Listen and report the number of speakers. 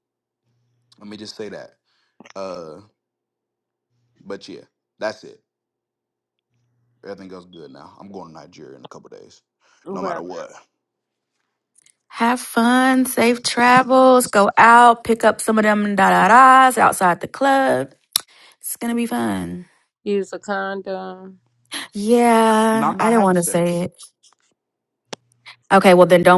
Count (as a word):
three